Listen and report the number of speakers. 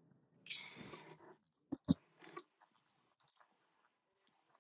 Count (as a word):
zero